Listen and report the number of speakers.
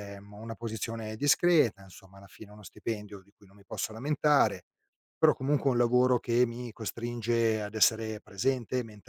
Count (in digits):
1